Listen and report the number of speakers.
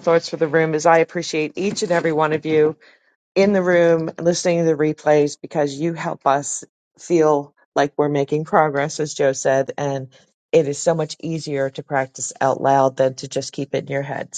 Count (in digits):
1